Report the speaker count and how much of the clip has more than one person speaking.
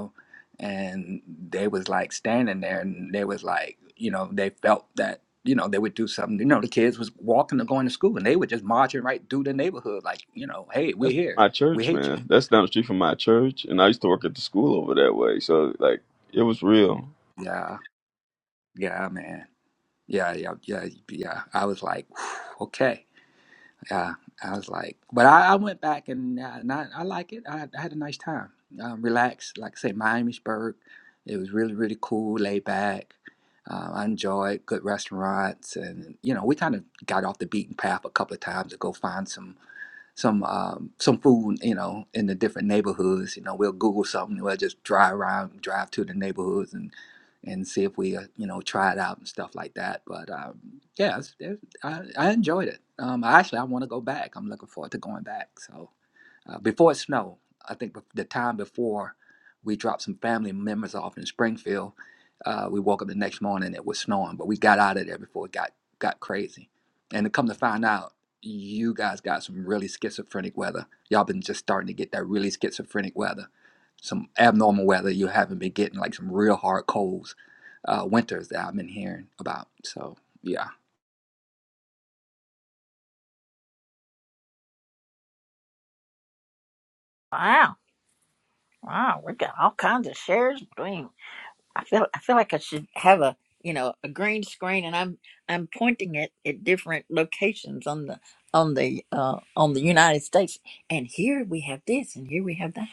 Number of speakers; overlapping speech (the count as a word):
three, about 1%